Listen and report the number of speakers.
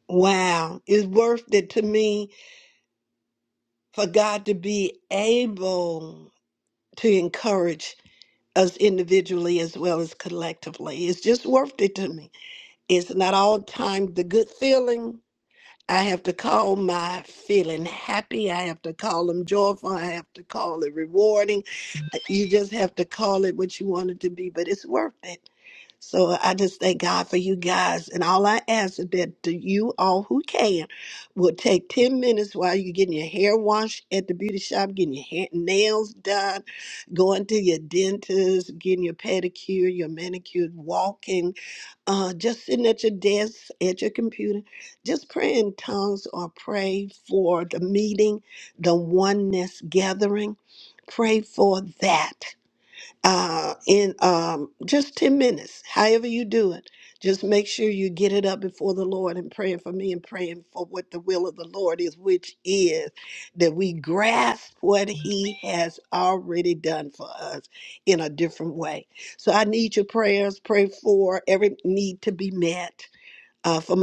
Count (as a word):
one